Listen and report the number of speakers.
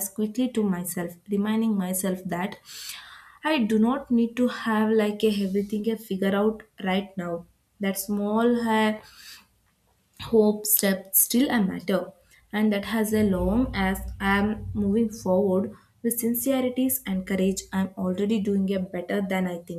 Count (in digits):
1